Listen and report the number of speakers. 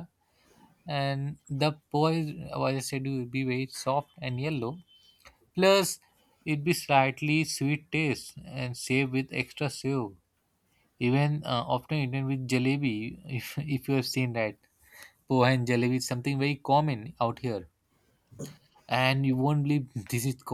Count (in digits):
1